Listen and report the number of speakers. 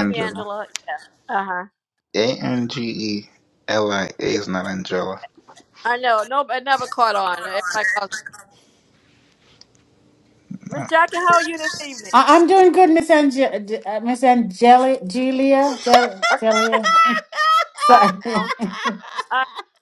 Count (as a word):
three